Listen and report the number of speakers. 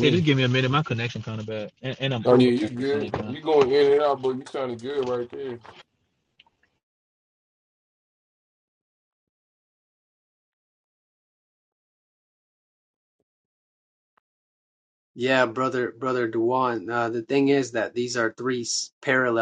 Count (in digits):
3